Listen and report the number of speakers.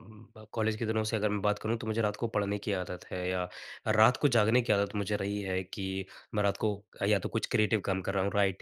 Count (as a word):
one